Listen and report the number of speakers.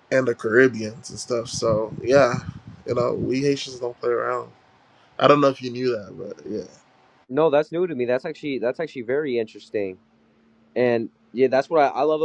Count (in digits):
2